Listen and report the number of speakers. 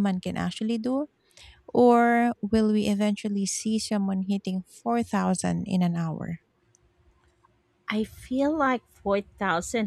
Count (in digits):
2